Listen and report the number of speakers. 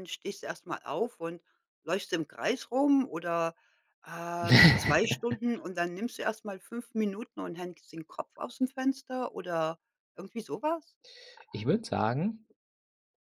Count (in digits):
2